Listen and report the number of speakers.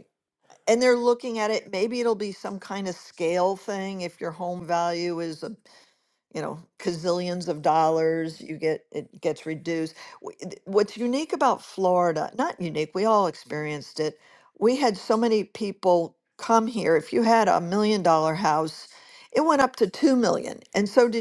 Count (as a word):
one